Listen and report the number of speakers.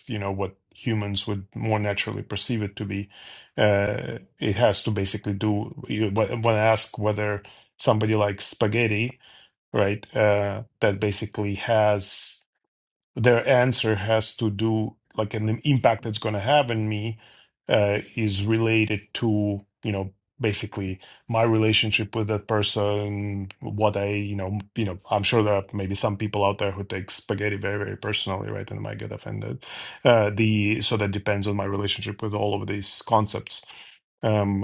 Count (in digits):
1